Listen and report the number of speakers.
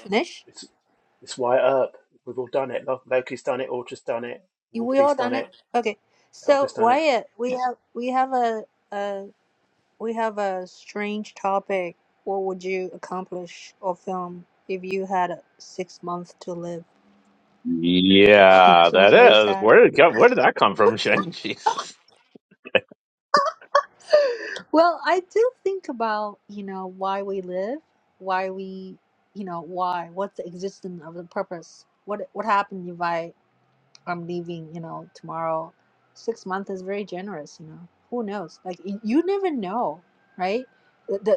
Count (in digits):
3